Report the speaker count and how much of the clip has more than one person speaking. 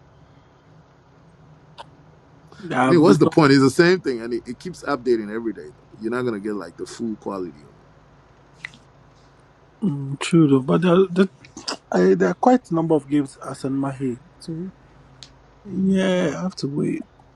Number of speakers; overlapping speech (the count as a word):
two, about 4%